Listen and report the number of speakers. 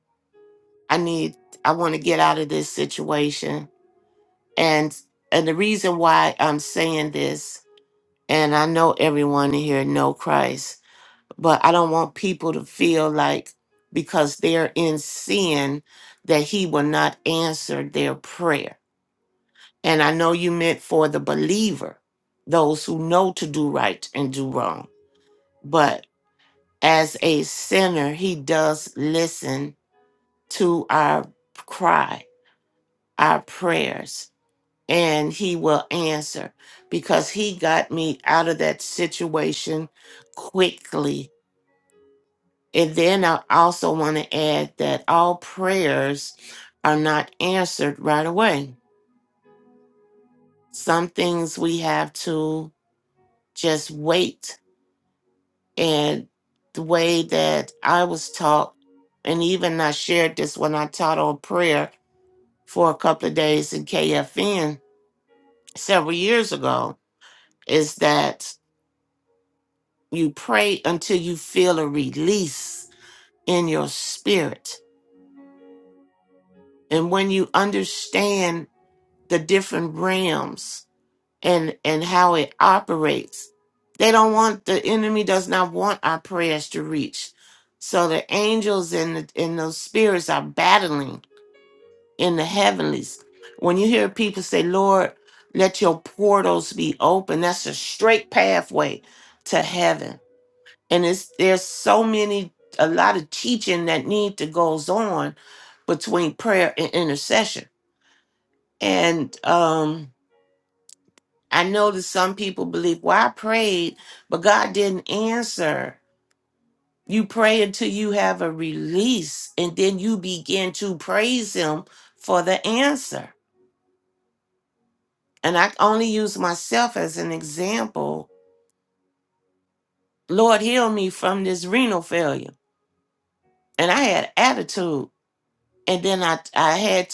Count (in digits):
1